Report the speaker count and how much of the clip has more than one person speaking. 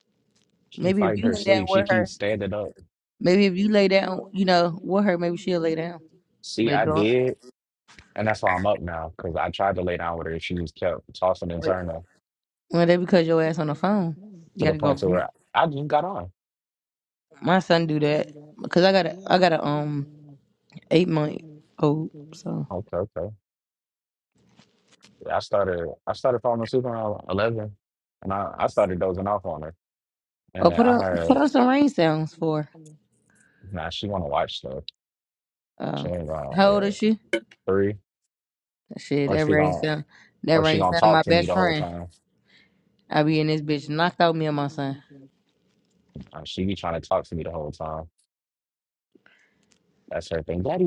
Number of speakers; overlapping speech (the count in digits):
2, about 11%